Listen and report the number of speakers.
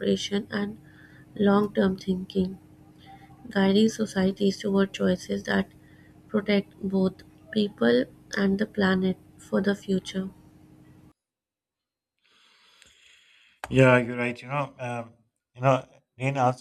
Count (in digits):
2